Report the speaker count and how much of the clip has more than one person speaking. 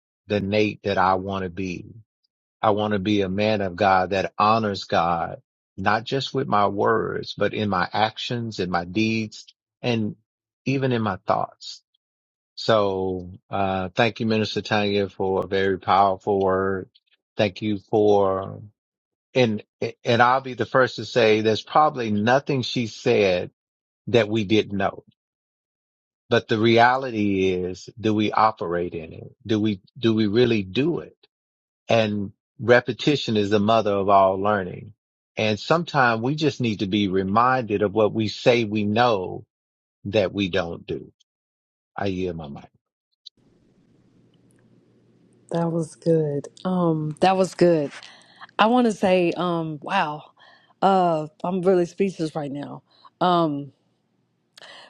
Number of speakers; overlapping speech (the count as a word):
two, no overlap